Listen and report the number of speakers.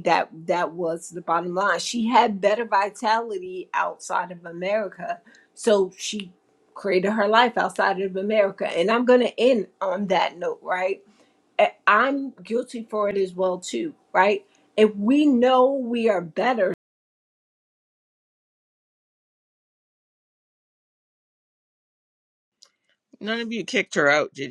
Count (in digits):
2